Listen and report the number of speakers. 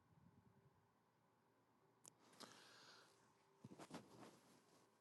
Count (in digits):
0